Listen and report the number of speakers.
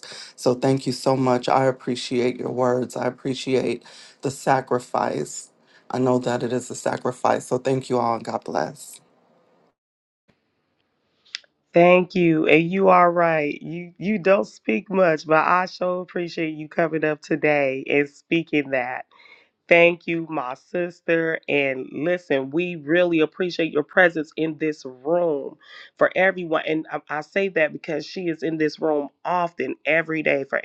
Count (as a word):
two